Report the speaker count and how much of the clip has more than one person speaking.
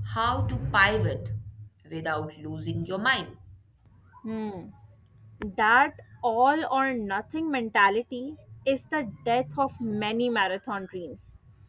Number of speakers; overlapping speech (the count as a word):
two, no overlap